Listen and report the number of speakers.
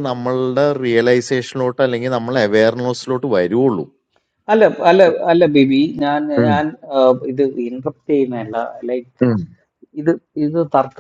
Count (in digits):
2